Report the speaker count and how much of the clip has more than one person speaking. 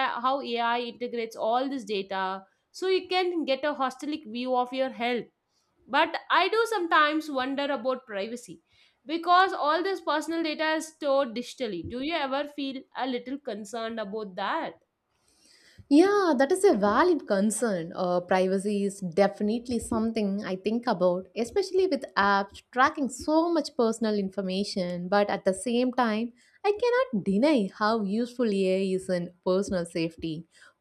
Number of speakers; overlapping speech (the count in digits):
2, no overlap